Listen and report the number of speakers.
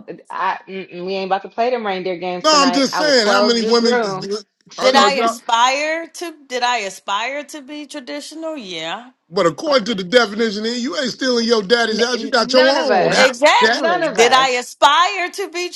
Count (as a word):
three